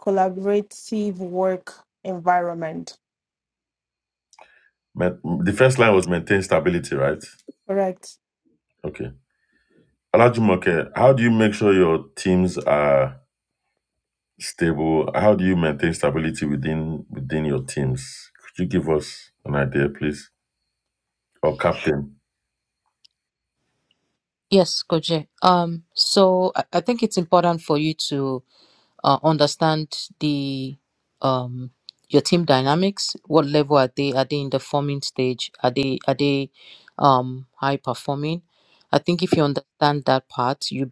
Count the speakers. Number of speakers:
3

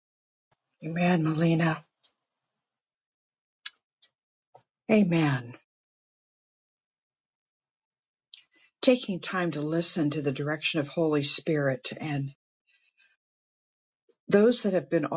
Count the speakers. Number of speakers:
1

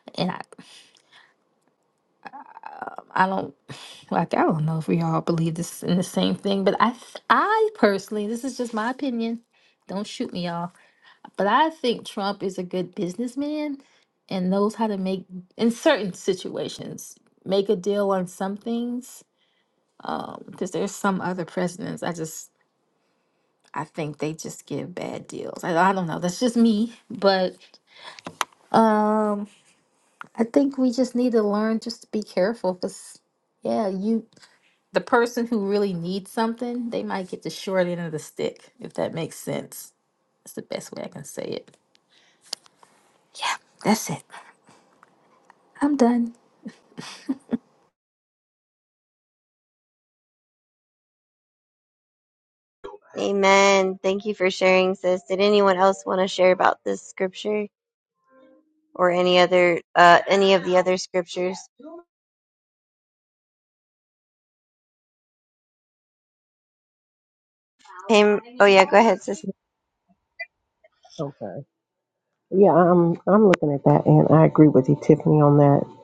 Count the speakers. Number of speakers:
3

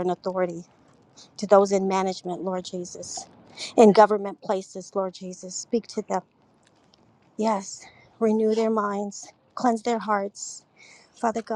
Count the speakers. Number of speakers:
1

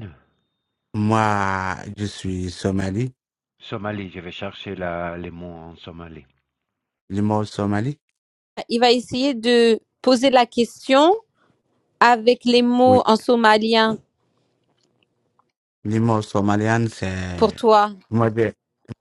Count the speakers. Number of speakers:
3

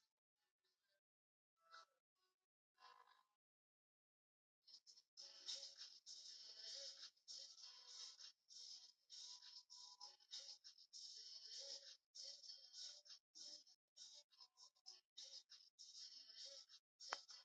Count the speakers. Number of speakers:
0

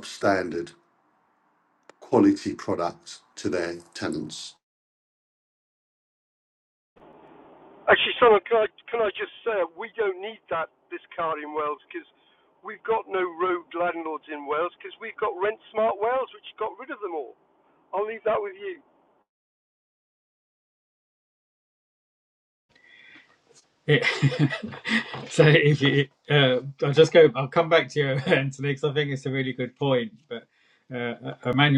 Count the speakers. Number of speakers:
3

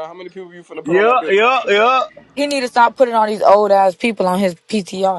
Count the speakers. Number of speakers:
3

